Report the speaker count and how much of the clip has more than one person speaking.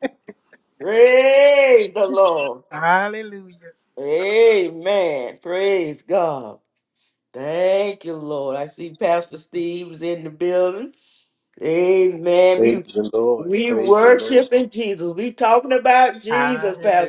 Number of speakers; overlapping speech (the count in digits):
3, about 13%